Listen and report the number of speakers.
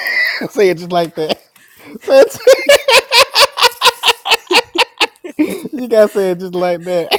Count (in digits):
1